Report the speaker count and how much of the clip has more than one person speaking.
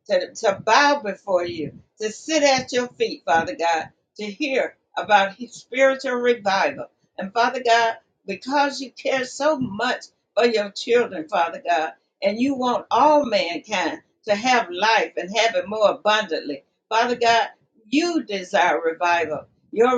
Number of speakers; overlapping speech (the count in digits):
1, no overlap